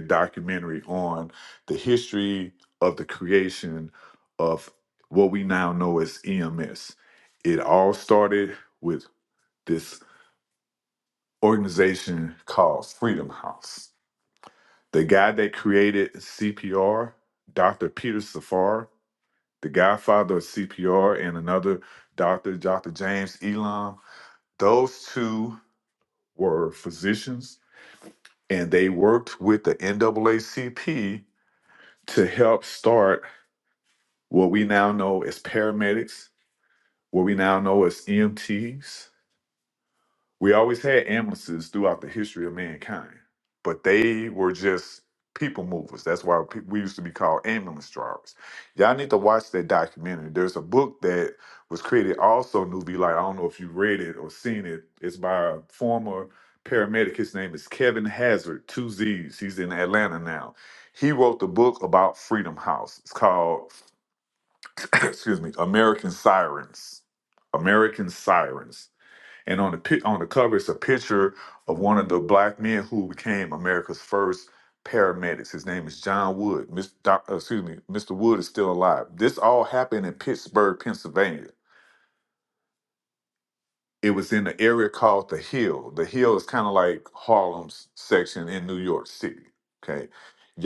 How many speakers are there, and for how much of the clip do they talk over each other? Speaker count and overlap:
one, no overlap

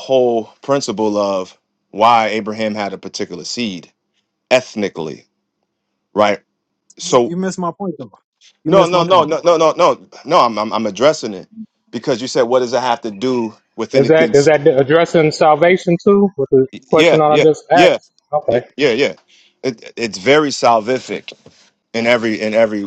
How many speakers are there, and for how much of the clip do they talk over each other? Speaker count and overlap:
three, about 12%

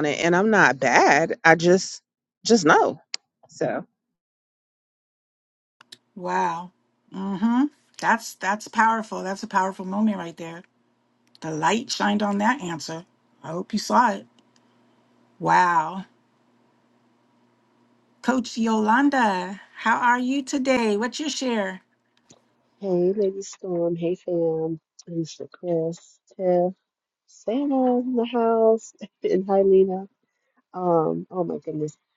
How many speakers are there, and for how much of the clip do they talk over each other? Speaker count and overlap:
three, no overlap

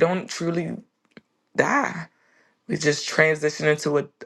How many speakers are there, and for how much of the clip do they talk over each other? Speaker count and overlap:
one, no overlap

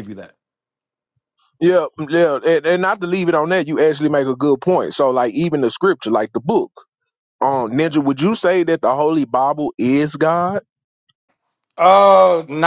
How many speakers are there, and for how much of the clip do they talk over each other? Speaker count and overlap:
two, no overlap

